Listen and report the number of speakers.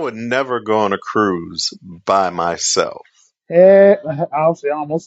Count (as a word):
two